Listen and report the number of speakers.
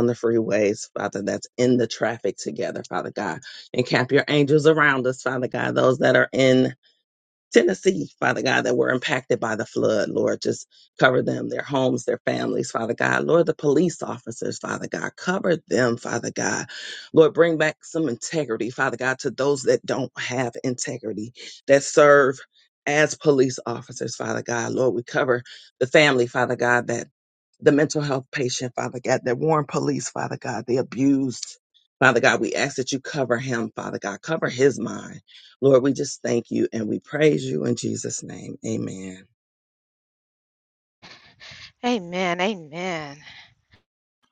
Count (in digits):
2